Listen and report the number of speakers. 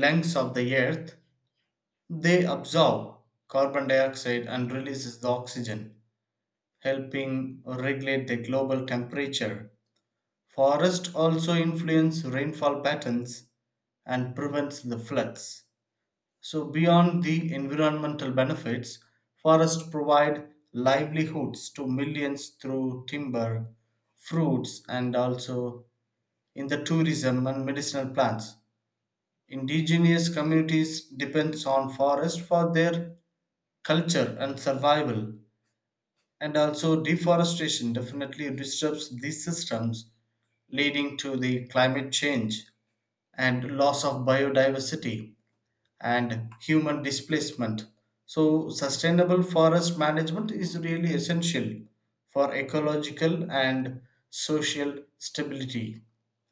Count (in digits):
1